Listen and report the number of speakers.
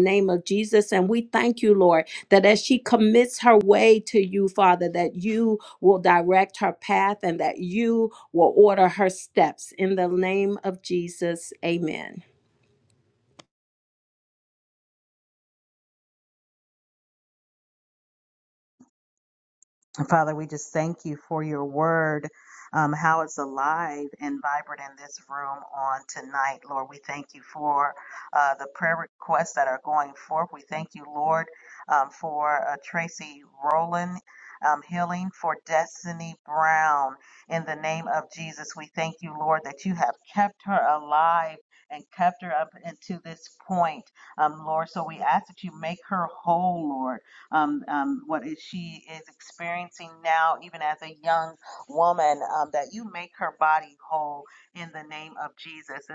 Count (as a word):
two